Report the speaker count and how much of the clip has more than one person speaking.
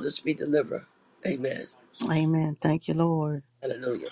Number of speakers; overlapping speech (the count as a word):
two, no overlap